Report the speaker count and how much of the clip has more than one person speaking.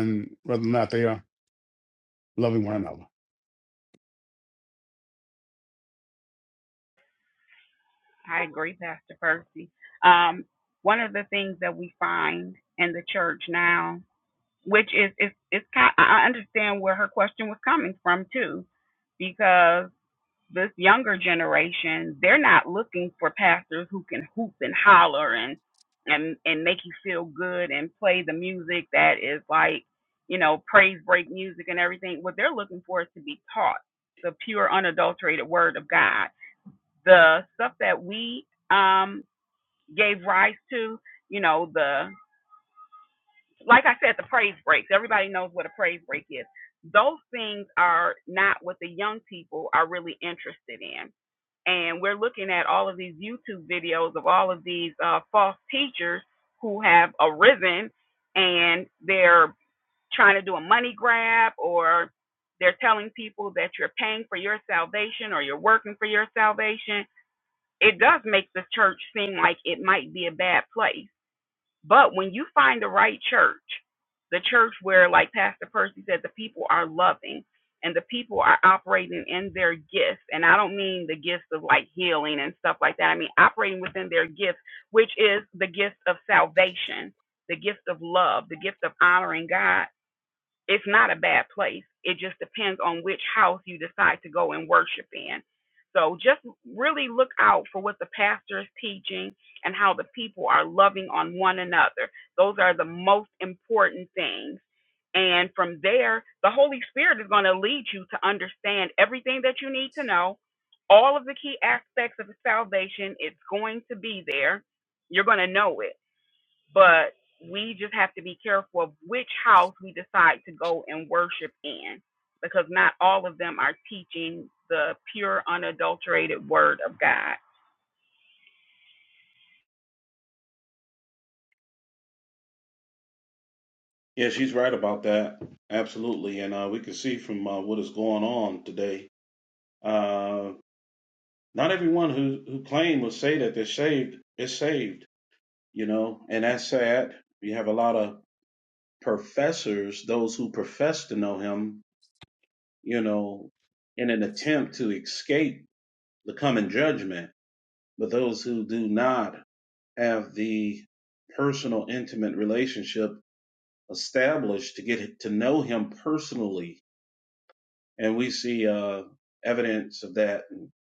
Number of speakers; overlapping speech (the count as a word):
three, no overlap